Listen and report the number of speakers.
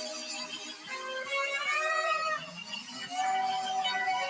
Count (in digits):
0